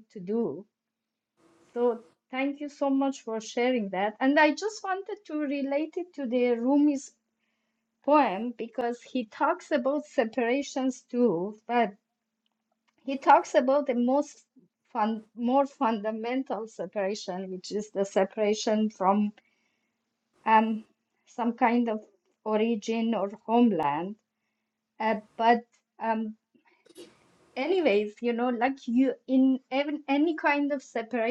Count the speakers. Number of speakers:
one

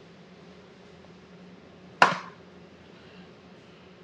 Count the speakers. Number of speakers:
zero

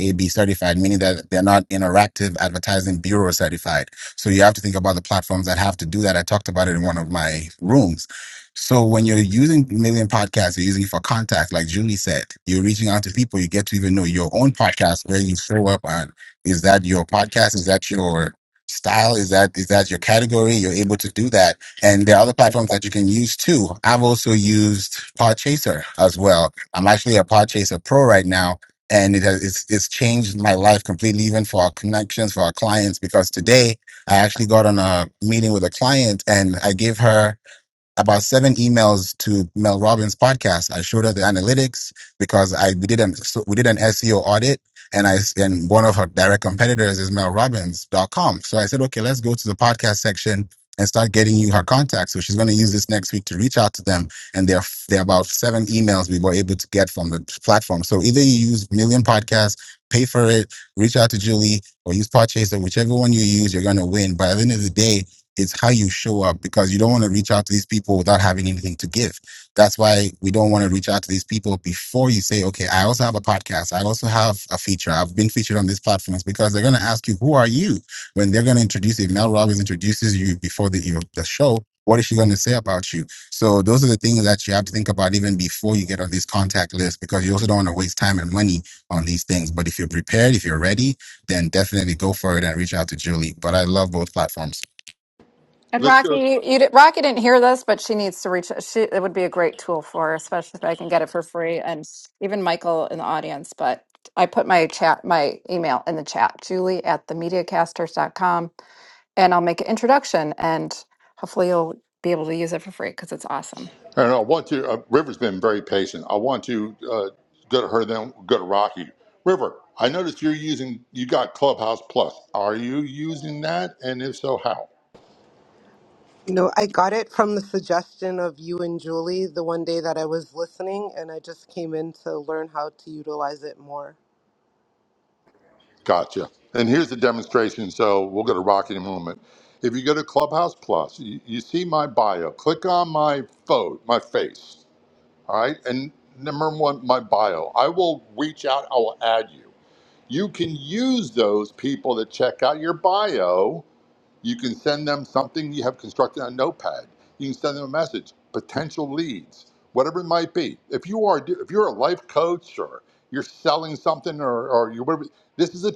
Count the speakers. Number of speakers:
four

